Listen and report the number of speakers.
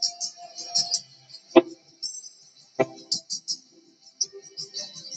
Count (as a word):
zero